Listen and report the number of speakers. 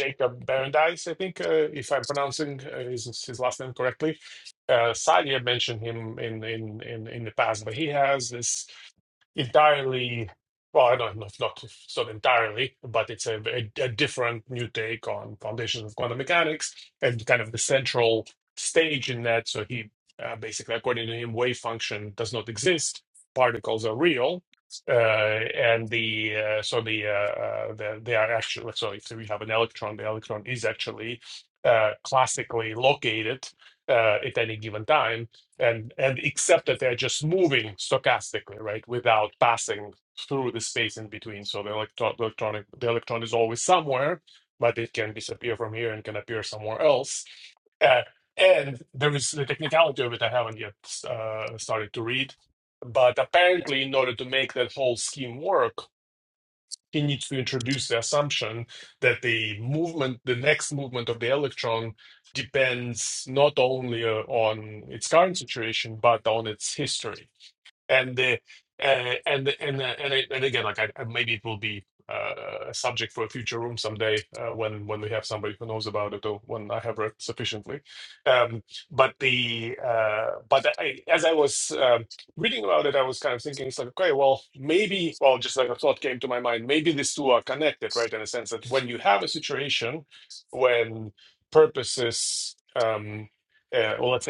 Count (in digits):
1